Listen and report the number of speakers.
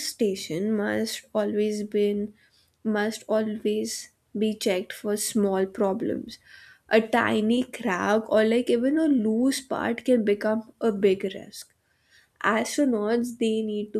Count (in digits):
1